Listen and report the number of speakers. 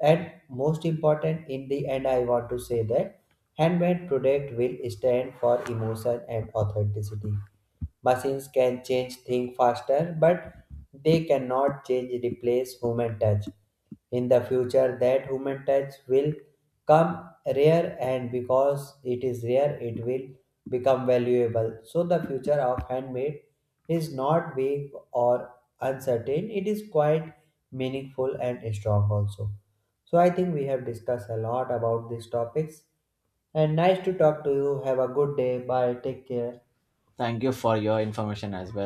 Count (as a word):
two